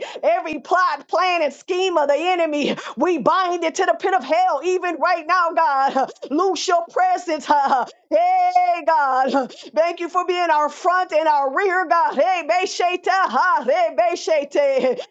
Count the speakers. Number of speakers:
1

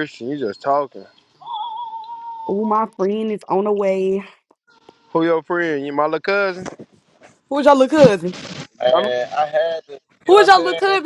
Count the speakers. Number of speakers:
3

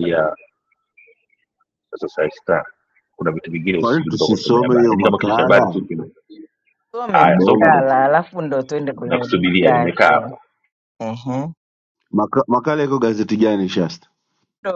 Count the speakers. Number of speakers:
3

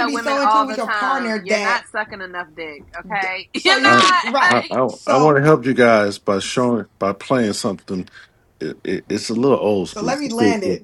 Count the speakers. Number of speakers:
3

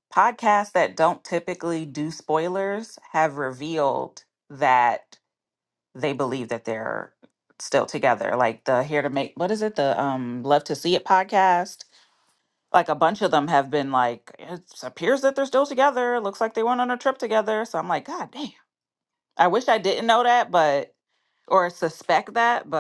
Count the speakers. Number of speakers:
1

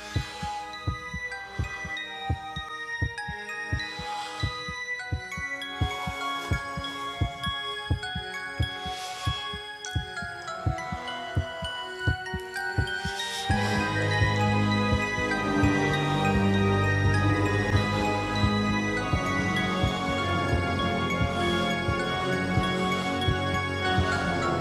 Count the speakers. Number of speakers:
0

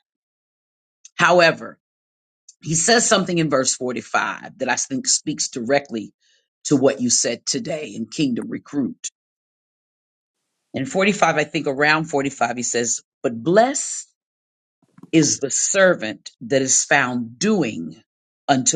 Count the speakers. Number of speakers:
1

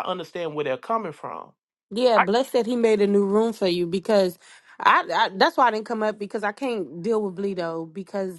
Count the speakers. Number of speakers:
2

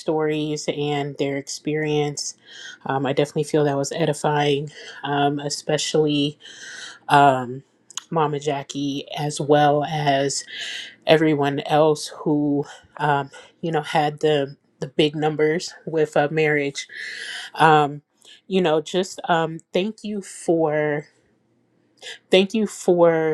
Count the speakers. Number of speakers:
1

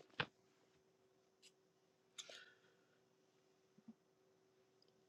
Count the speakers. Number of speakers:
0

